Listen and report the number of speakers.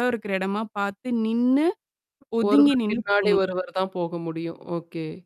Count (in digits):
2